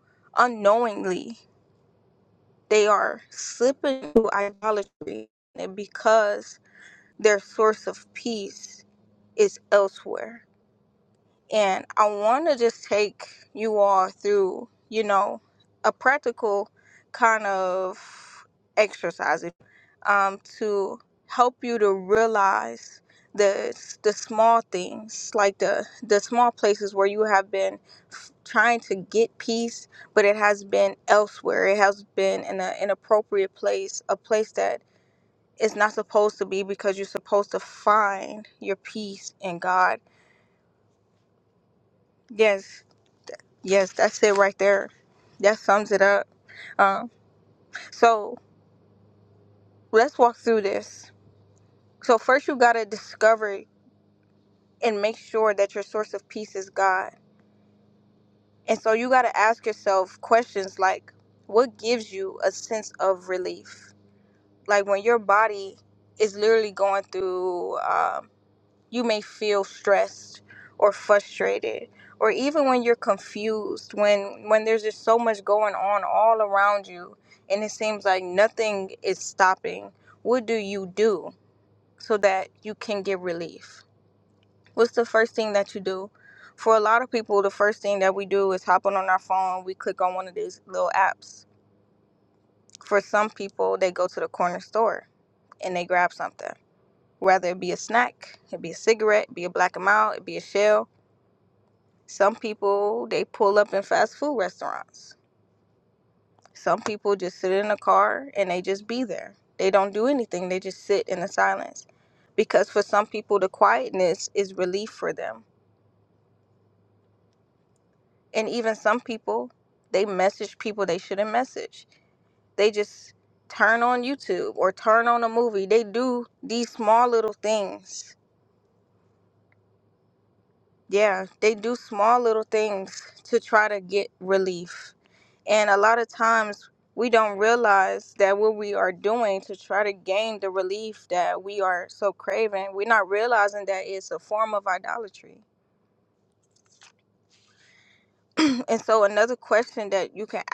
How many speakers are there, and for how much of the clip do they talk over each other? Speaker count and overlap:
1, no overlap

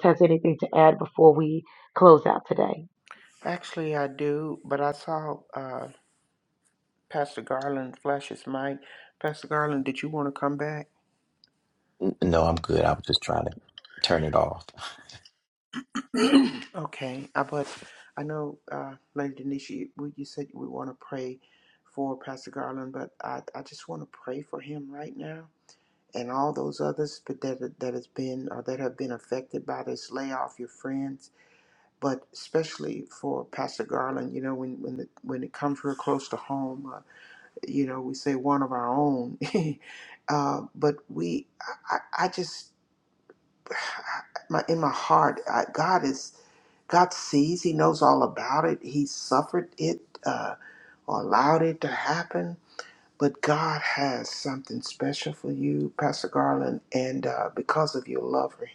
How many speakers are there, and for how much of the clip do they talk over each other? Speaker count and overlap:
3, no overlap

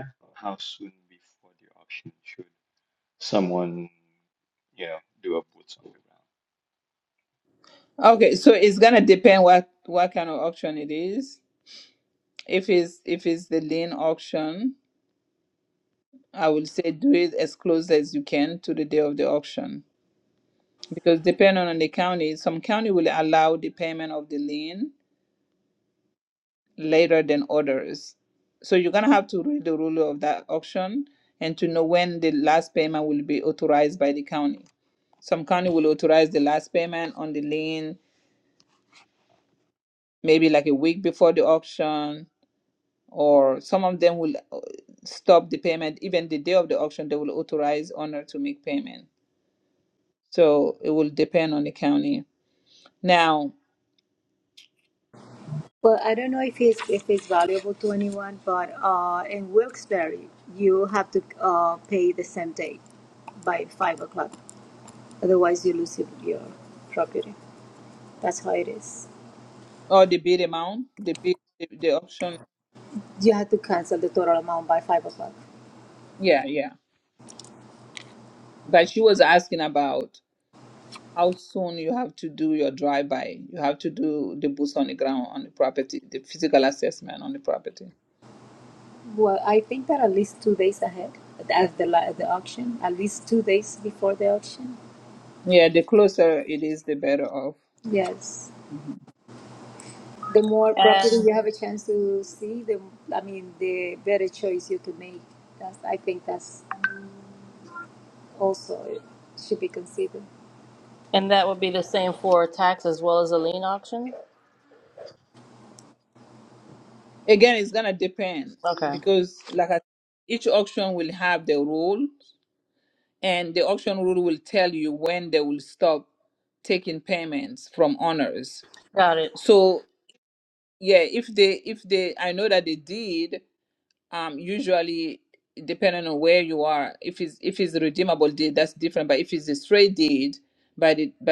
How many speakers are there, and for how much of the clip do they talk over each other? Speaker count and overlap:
4, under 1%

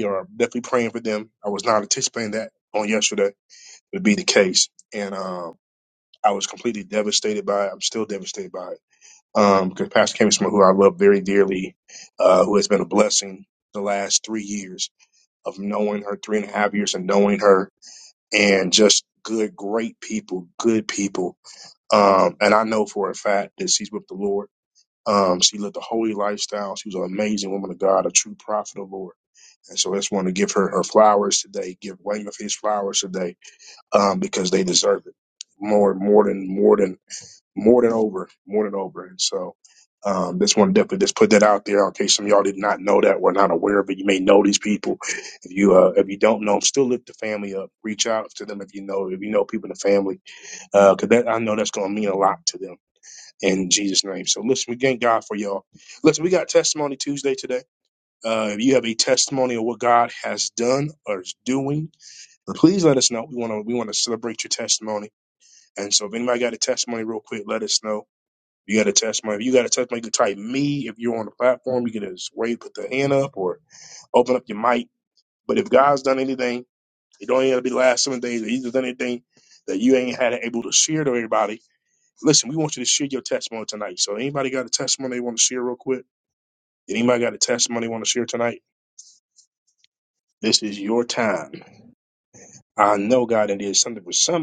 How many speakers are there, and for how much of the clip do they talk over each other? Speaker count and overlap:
1, no overlap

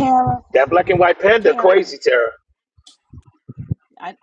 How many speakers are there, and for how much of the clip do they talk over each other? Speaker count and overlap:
2, about 11%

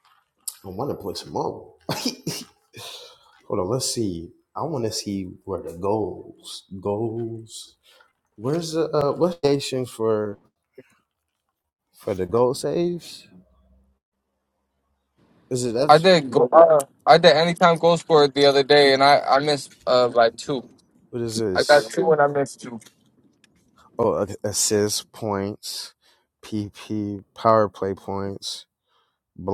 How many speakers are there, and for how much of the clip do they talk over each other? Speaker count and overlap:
2, about 1%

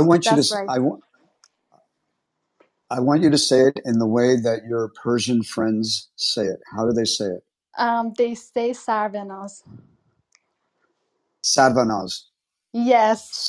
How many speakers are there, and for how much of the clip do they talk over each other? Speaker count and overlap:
2, about 3%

